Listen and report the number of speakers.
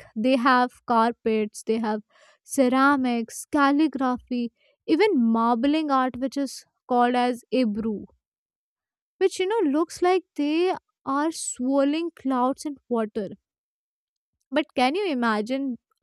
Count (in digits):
1